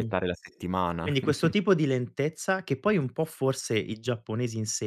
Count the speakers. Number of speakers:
2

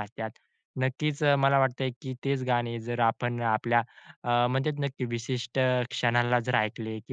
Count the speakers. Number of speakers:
1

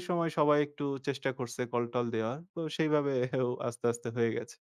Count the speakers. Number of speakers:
1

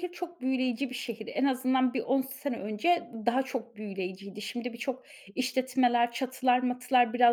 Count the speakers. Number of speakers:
1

